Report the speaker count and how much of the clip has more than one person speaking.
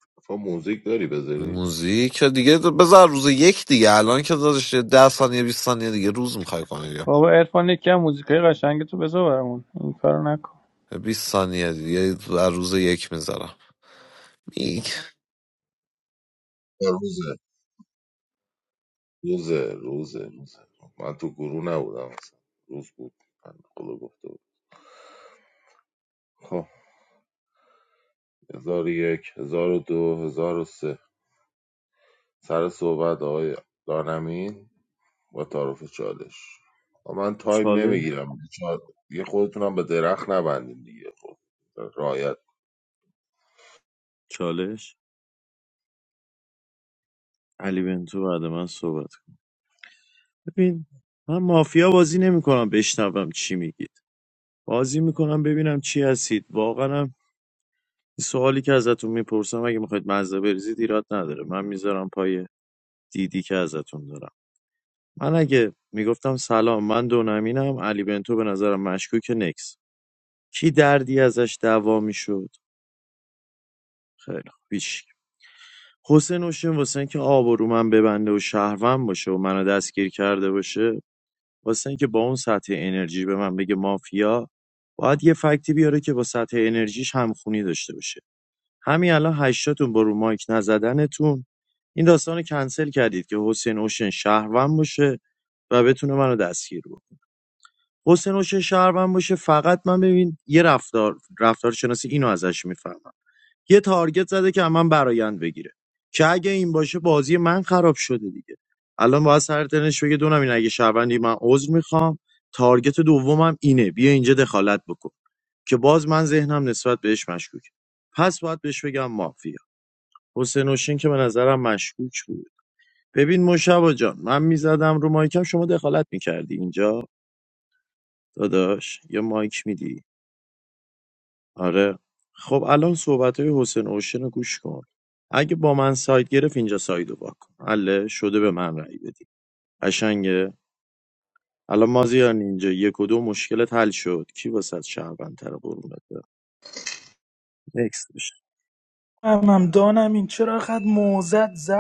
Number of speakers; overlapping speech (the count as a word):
five, about 1%